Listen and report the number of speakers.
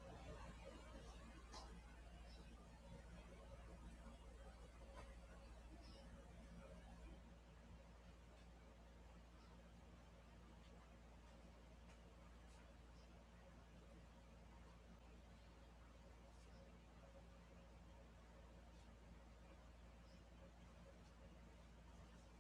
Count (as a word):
zero